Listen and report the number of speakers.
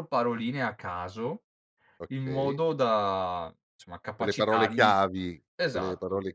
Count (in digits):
2